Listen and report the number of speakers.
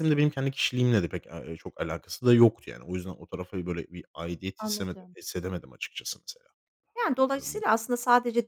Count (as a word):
two